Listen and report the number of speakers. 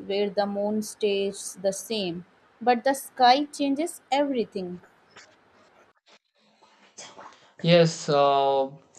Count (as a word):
two